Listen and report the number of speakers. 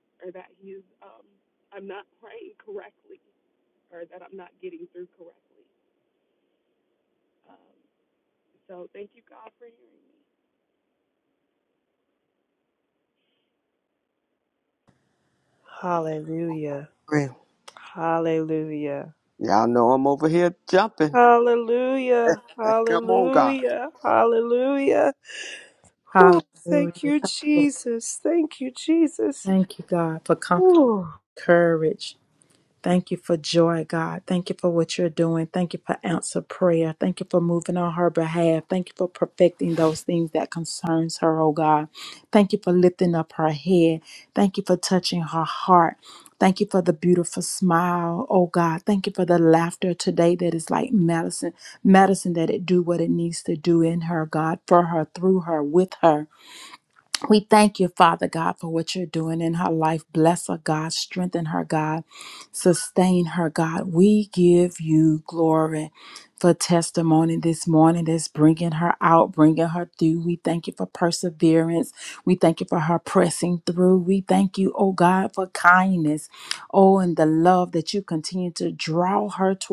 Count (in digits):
4